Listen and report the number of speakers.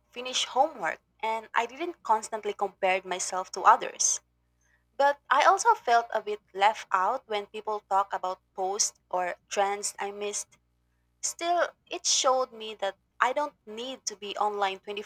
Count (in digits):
1